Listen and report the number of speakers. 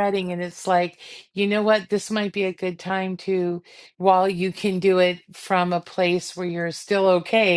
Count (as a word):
one